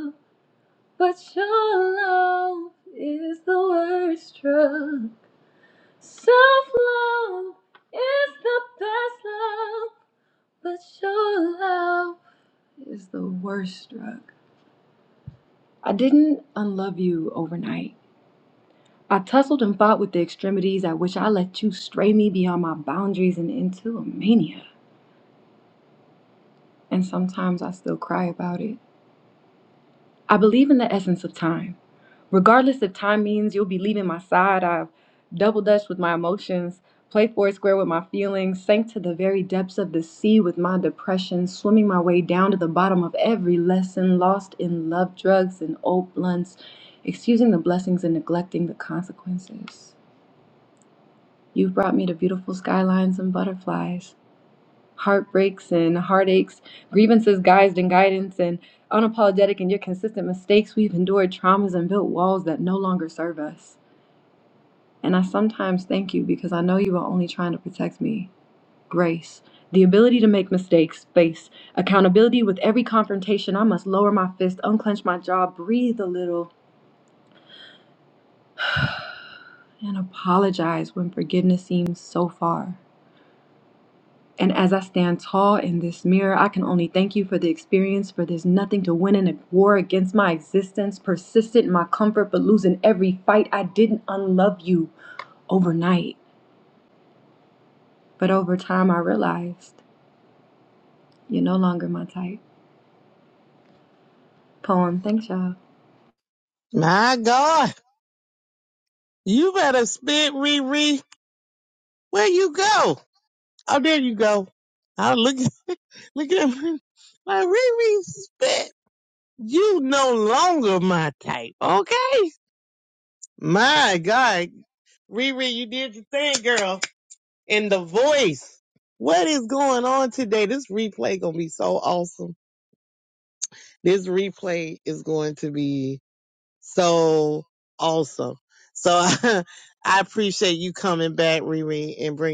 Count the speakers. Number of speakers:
two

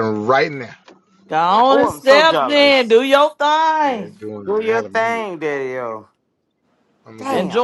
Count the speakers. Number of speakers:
three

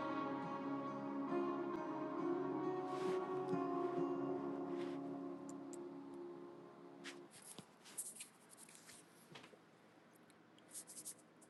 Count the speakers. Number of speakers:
zero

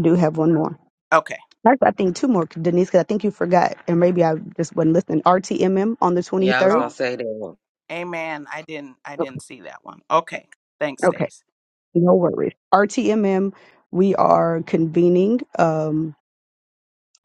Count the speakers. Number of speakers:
three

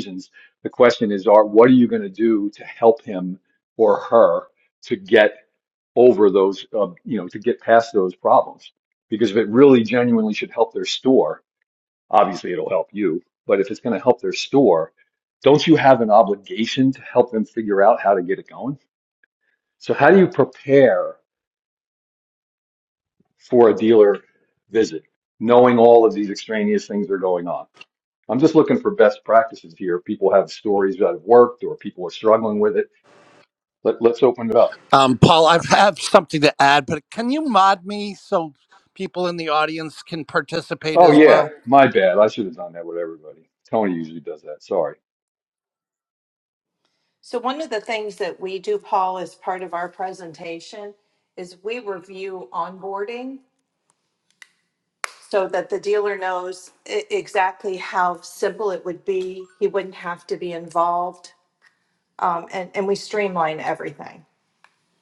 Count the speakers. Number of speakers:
three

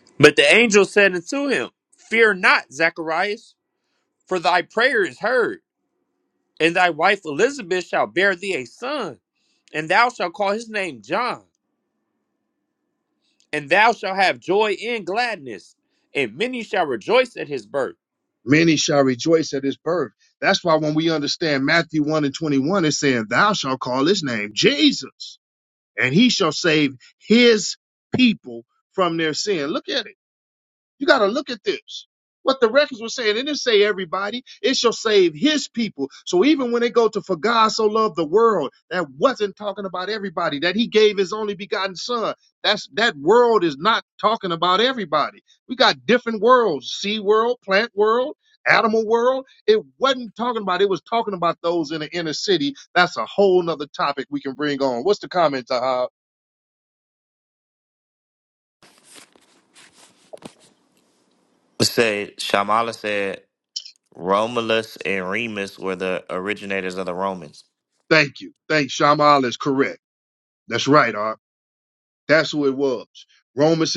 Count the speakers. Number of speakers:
three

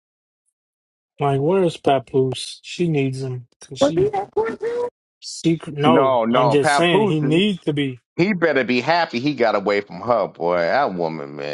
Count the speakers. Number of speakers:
three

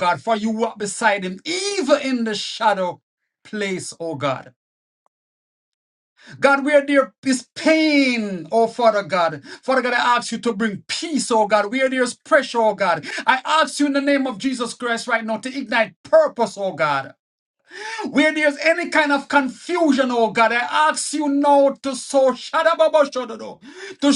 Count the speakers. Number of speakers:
one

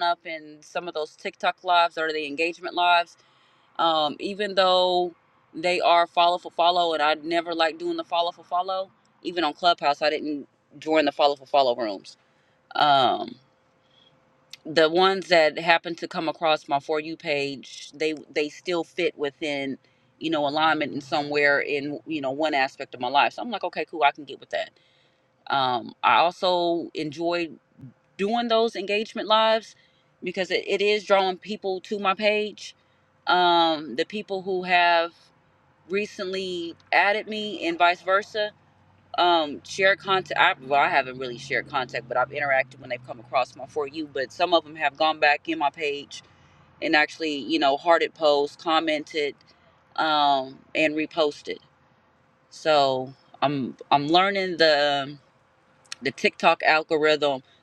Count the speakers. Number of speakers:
one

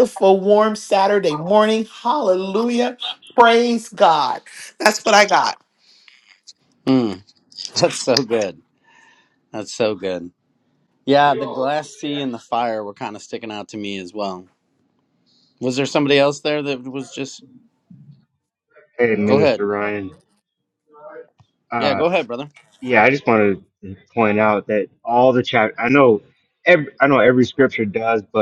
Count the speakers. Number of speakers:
three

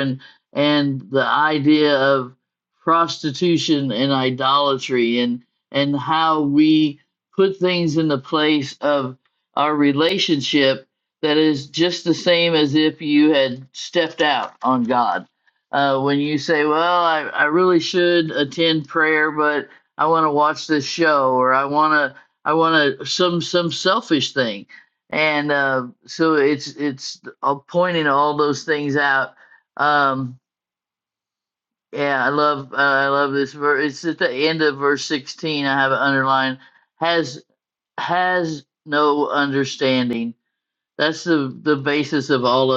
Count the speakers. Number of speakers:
one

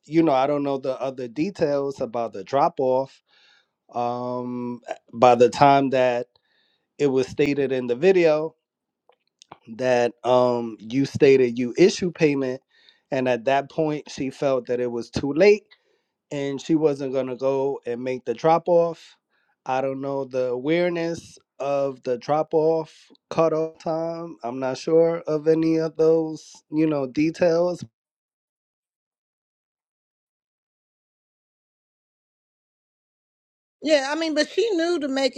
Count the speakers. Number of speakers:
two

